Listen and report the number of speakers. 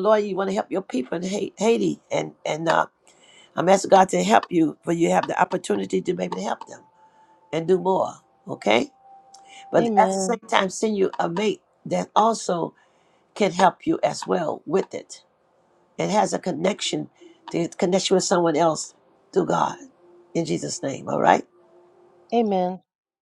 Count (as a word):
two